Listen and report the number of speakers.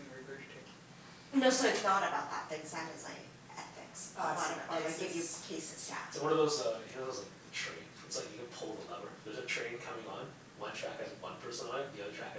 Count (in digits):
3